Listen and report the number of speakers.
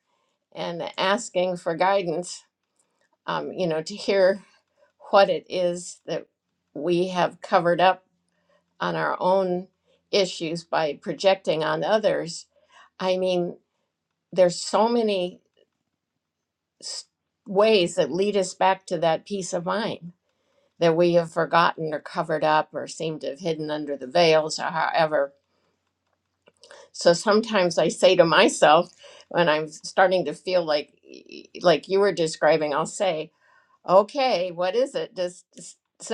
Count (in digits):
1